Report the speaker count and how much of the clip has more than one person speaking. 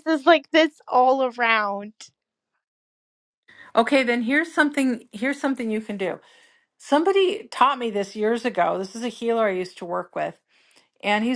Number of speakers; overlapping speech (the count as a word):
two, no overlap